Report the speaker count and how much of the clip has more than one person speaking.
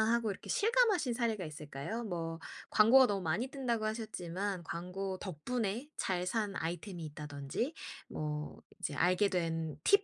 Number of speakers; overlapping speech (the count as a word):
one, no overlap